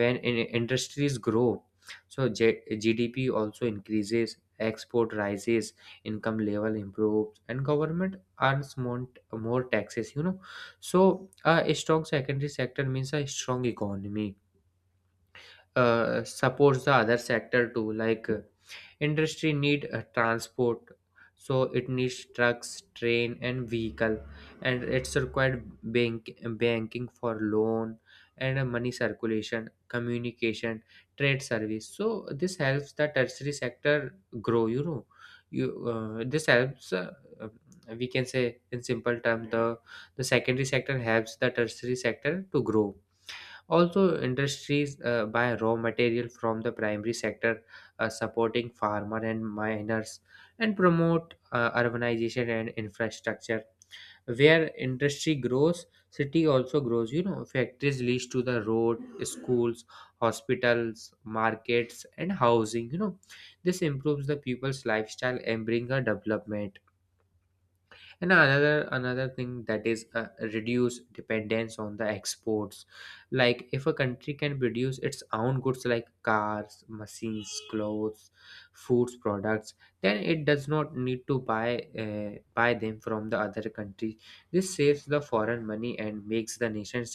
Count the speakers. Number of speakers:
1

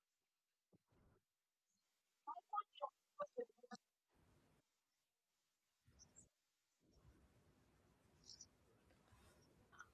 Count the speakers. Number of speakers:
0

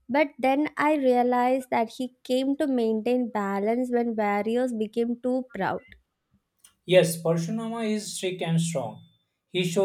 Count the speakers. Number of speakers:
2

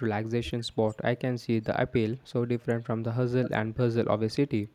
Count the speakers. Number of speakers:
1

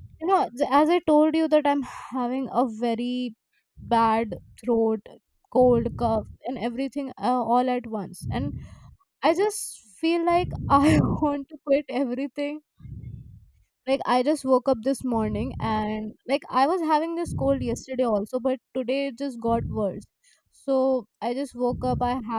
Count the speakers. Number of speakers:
1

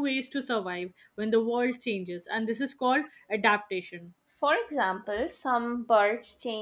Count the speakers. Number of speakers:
2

